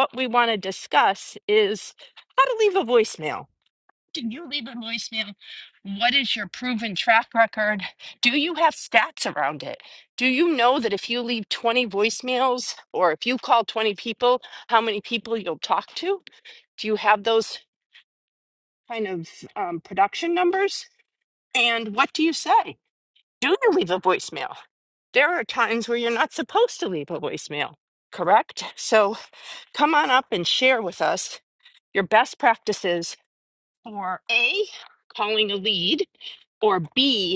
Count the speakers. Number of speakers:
1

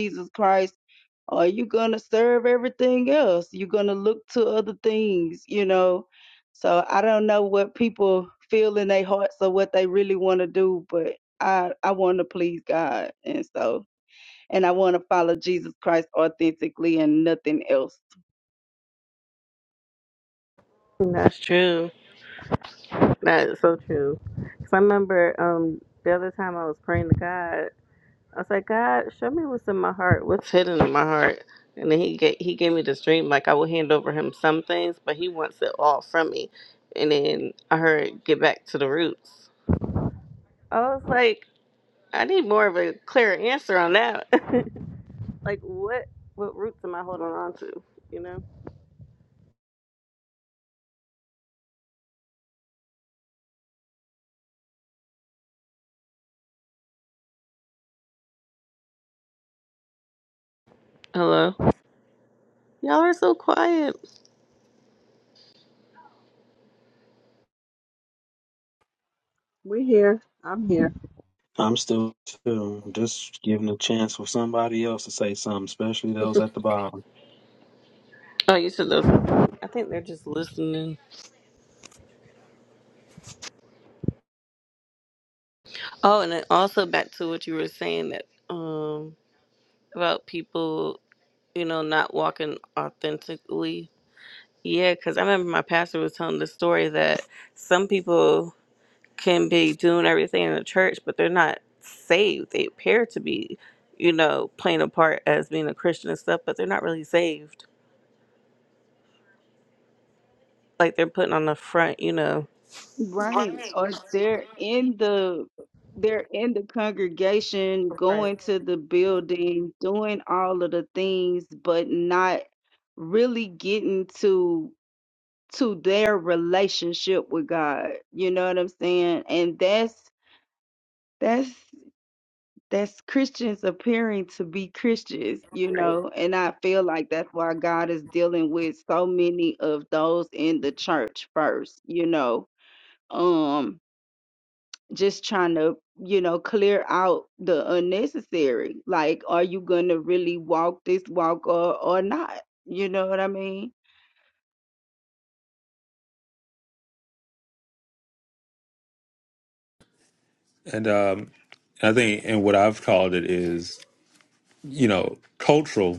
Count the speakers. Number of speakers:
5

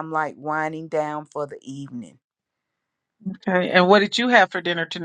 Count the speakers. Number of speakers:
2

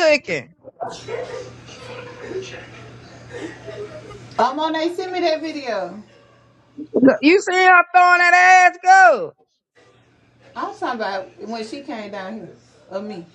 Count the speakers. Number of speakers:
2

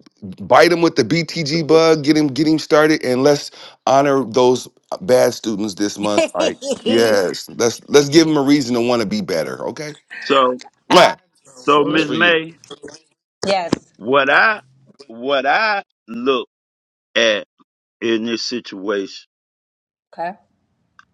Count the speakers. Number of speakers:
3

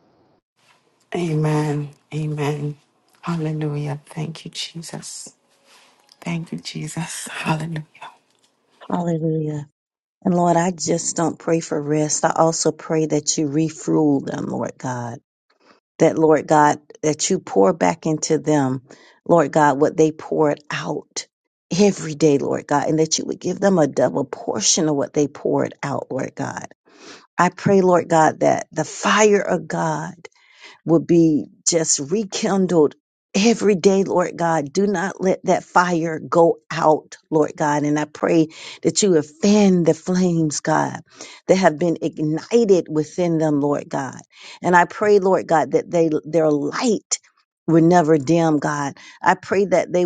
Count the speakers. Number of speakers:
2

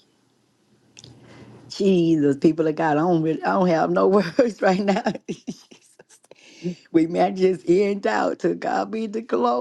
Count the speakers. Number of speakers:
1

